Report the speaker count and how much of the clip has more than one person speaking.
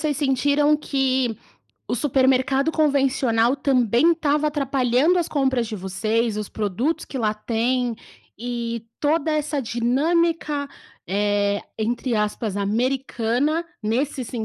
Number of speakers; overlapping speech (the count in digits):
1, no overlap